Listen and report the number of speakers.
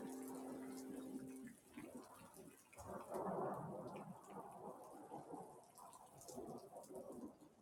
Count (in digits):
0